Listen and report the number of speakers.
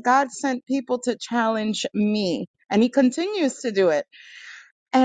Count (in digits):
1